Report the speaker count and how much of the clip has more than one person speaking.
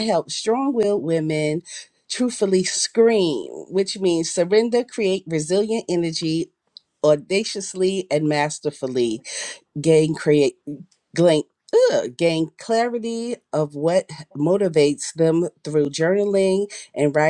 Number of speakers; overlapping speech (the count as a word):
one, no overlap